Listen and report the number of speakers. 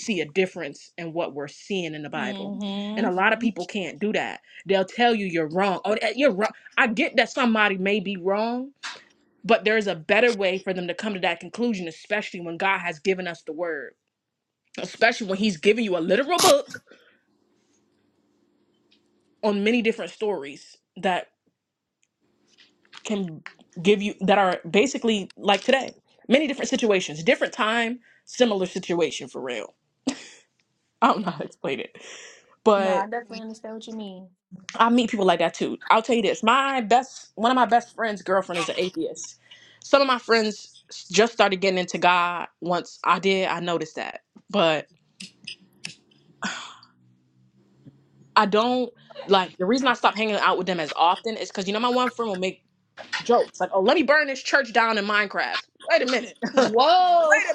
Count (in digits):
2